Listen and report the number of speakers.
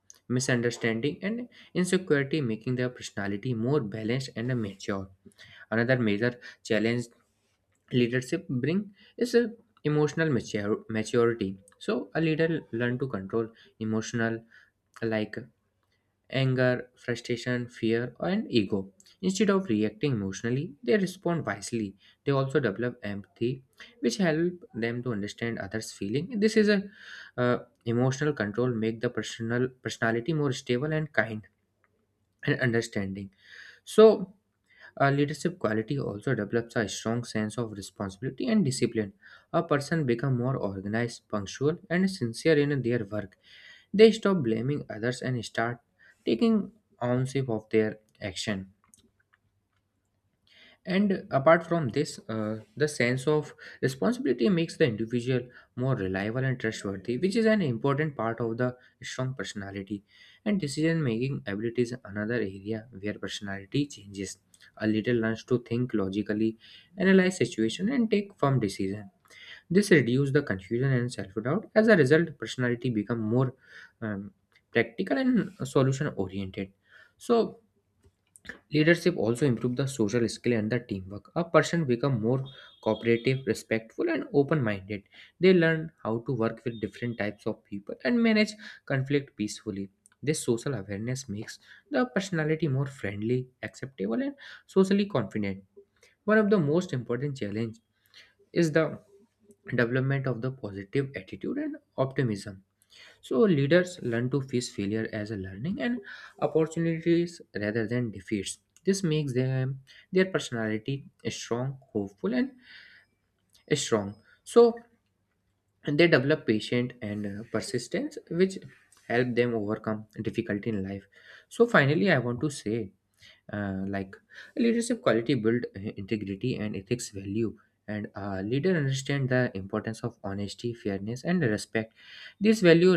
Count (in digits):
1